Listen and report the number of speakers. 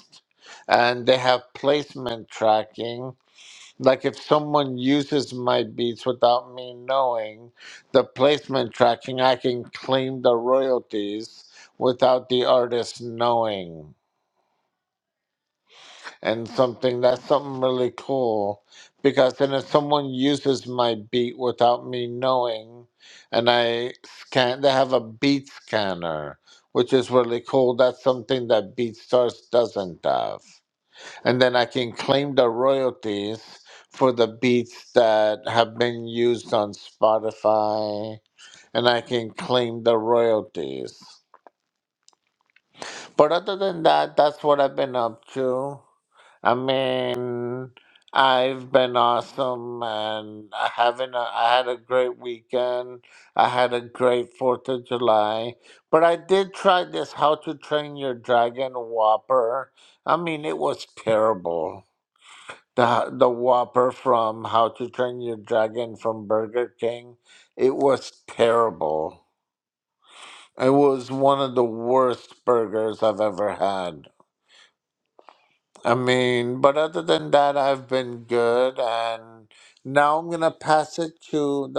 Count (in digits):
1